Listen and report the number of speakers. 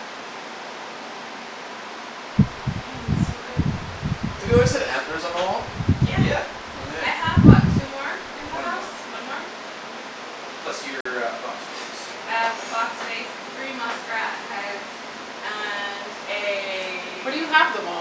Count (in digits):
4